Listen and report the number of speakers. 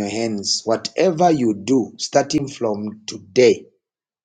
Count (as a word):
one